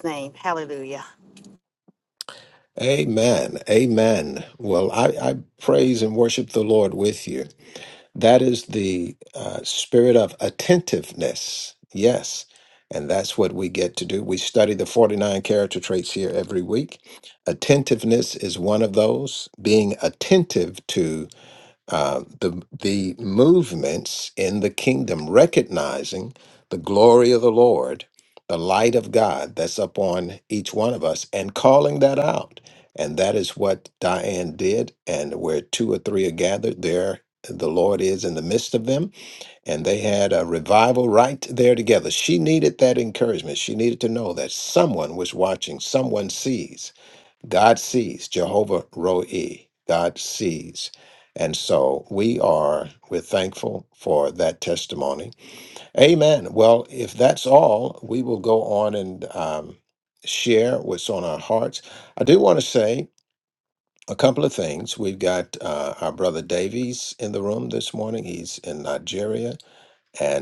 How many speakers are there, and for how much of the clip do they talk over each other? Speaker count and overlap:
two, no overlap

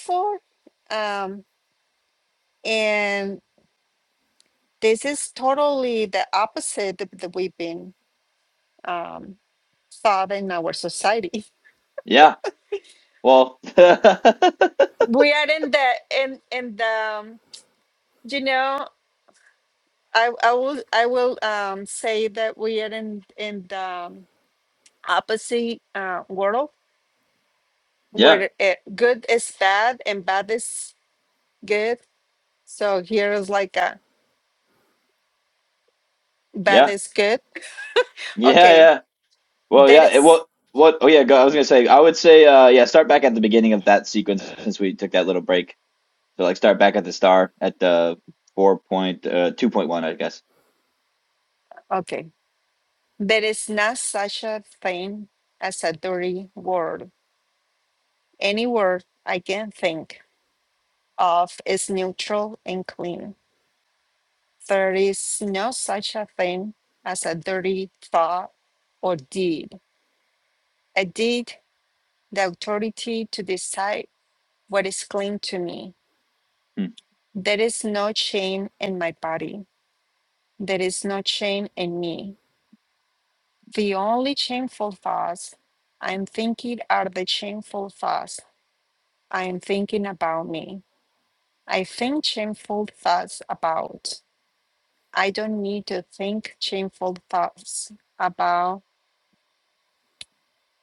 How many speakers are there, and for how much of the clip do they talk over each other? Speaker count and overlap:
two, about 1%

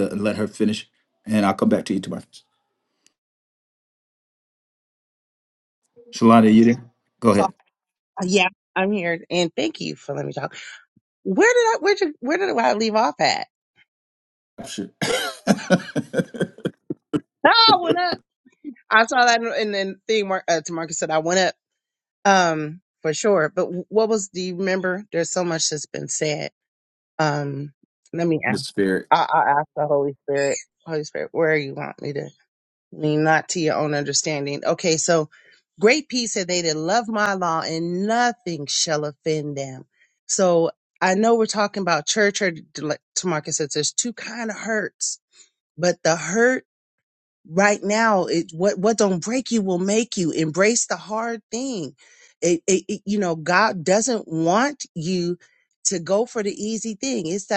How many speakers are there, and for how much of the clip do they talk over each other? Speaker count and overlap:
two, under 1%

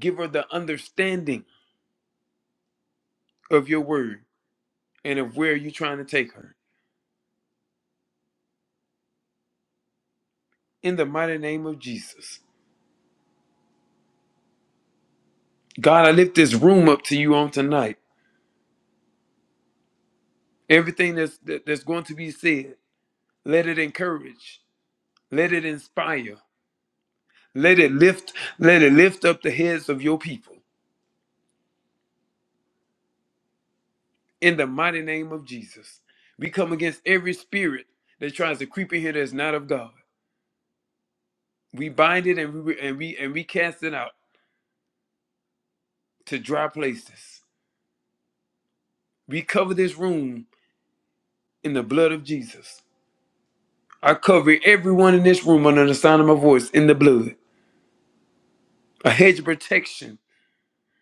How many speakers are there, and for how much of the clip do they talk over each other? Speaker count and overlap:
one, no overlap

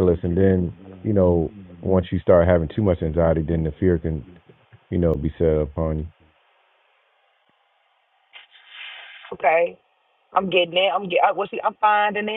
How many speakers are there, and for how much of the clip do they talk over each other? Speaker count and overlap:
two, no overlap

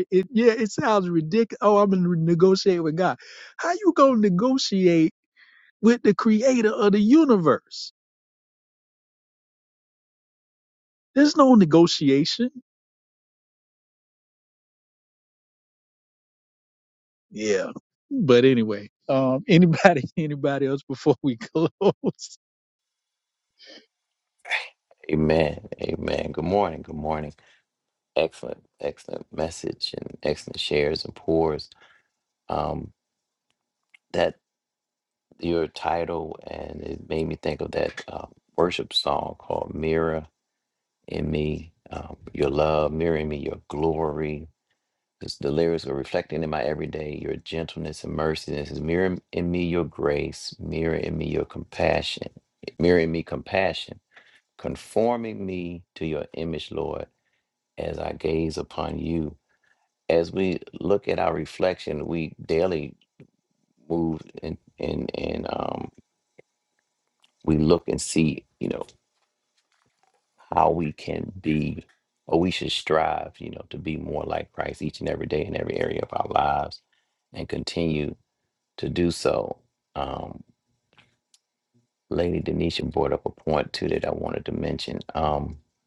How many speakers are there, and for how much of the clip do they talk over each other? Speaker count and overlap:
two, no overlap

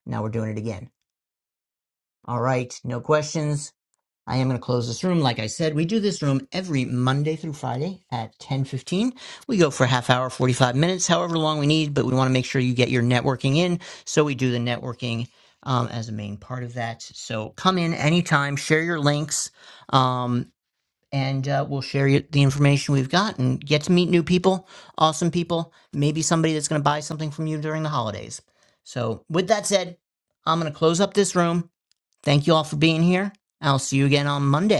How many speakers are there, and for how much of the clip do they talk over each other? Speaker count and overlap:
one, no overlap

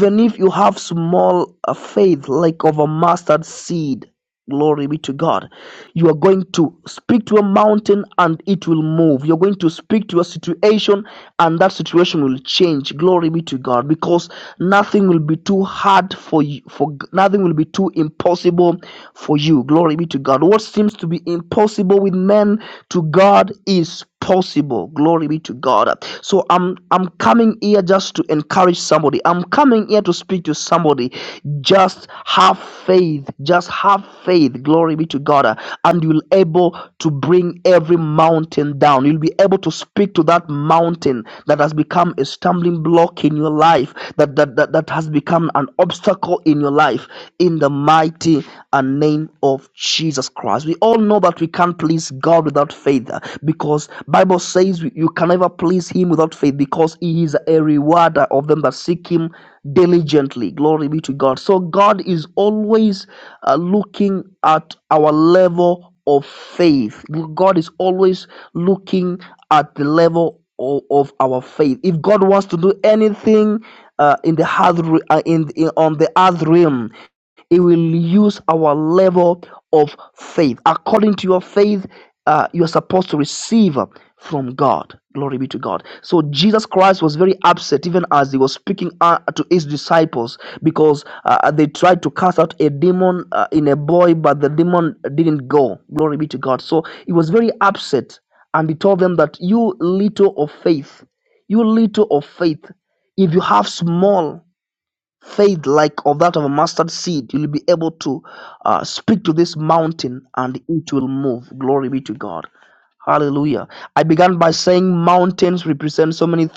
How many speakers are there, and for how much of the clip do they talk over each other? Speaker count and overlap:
one, no overlap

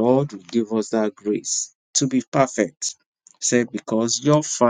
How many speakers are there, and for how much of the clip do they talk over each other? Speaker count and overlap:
one, no overlap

